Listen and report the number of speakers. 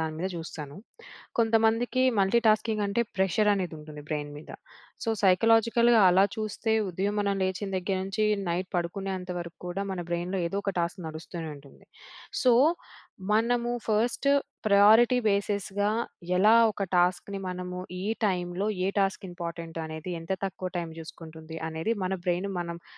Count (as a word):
one